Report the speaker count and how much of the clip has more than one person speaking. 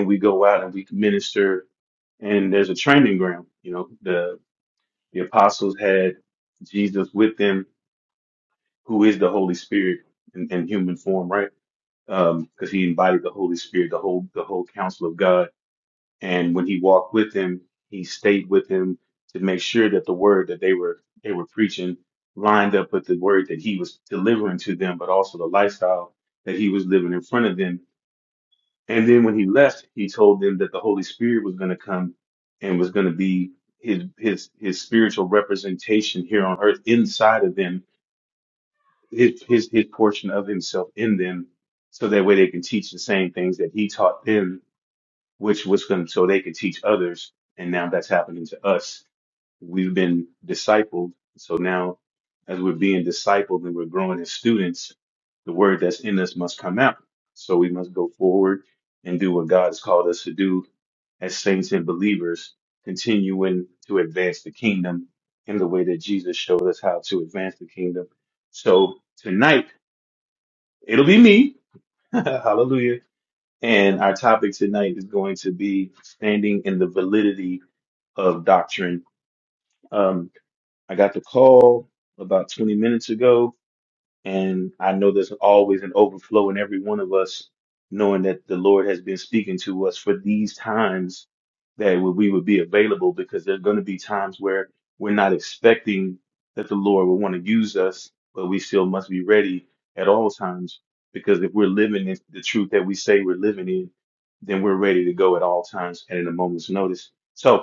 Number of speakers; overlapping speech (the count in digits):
1, no overlap